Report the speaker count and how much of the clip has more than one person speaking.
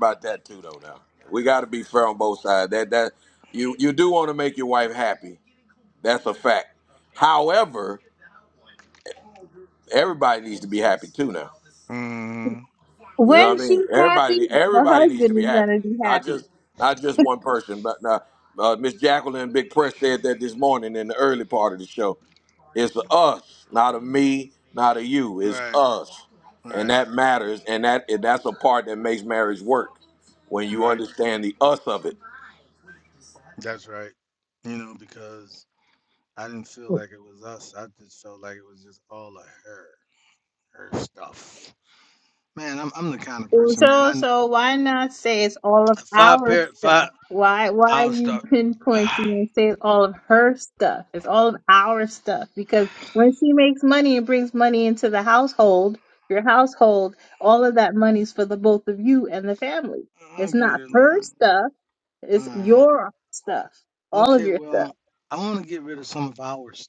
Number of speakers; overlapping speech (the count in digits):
3, about 12%